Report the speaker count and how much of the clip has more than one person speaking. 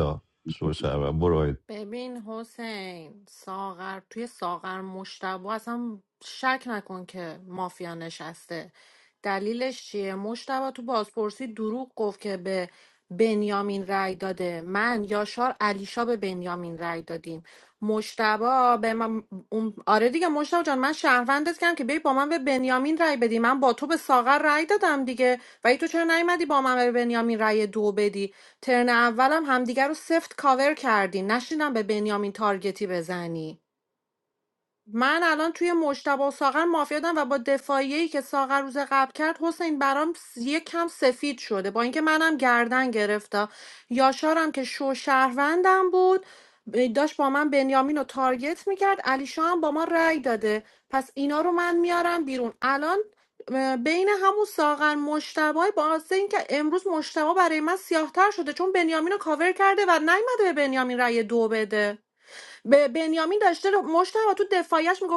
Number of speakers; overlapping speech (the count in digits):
2, no overlap